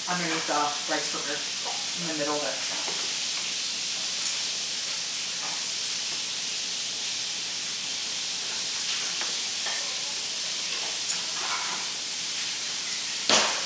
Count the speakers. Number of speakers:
1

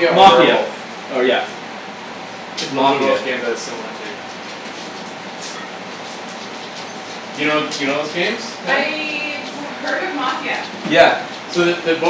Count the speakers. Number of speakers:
3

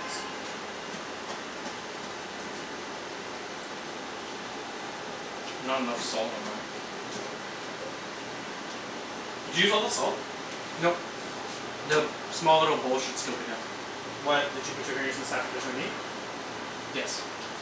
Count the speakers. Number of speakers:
2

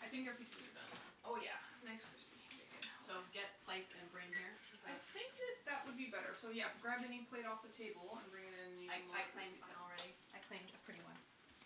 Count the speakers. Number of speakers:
2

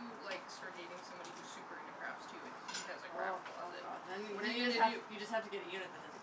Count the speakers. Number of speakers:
2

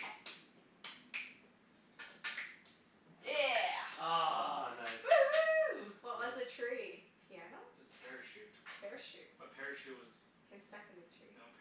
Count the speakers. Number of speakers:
4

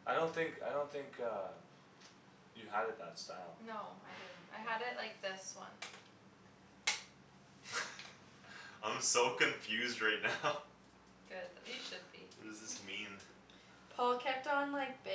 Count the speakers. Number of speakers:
4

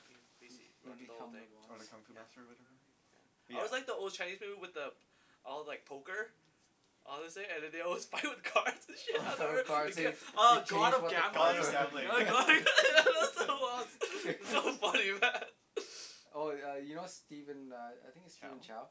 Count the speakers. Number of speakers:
3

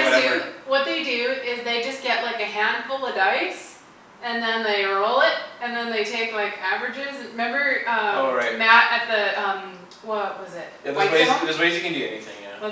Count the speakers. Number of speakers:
2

